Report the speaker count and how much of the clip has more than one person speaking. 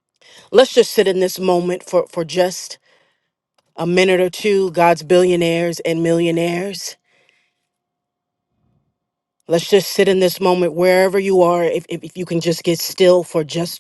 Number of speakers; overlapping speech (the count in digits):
1, no overlap